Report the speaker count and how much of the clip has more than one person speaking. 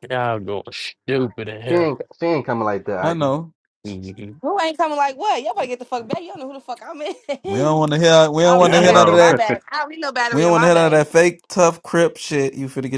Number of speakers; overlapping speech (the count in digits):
4, about 16%